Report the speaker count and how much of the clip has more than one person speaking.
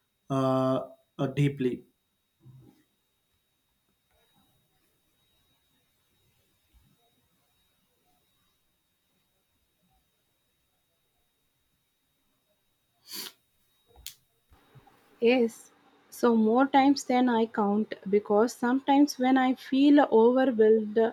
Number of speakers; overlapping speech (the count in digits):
2, no overlap